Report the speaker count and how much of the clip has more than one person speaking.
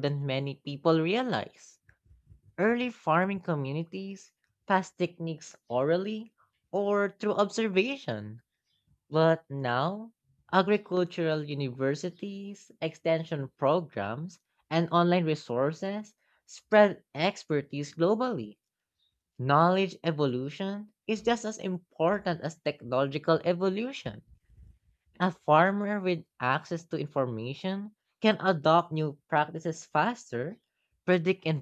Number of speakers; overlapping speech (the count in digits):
1, no overlap